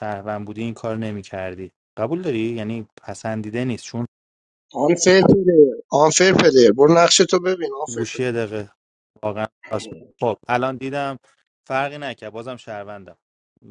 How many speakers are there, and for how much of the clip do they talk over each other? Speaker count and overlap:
2, about 2%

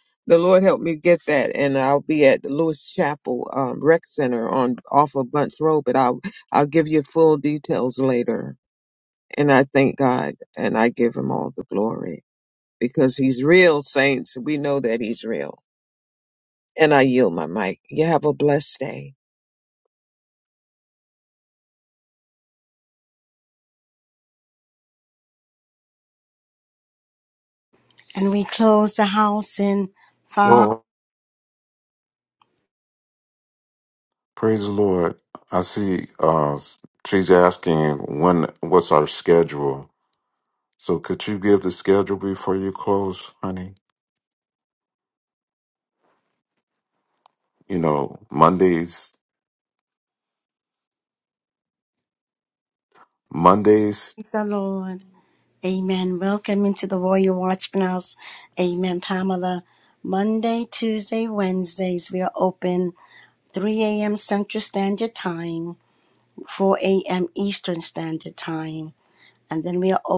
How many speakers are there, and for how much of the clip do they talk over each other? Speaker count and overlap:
3, under 1%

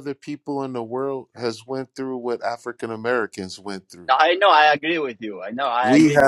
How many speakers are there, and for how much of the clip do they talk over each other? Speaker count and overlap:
2, about 7%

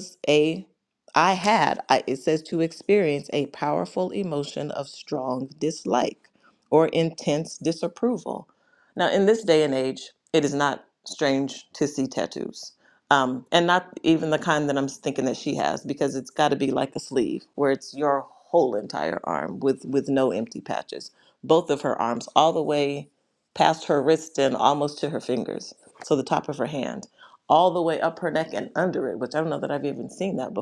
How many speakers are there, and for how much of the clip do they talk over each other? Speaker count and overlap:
1, no overlap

